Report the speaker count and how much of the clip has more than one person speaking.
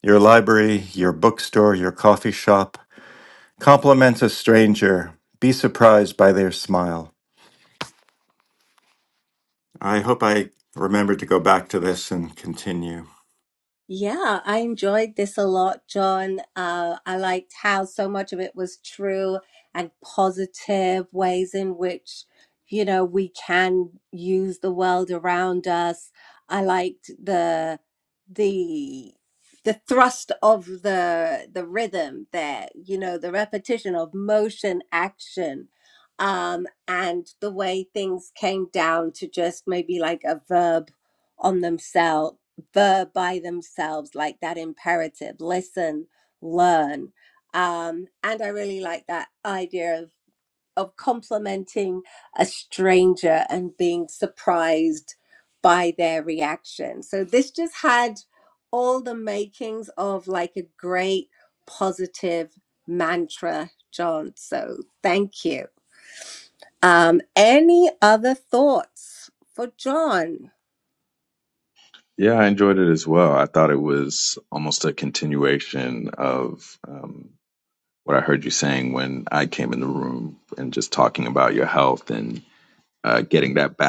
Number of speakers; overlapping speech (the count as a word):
three, no overlap